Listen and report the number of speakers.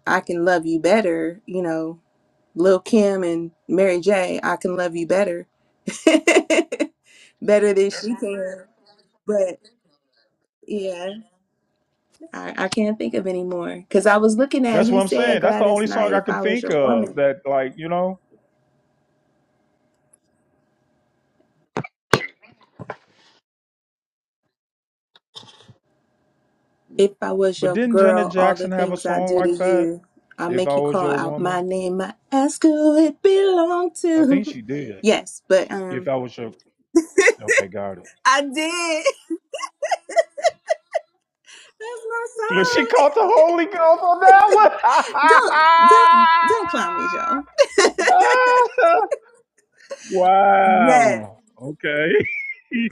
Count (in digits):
2